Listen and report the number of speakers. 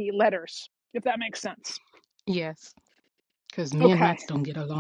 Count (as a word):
two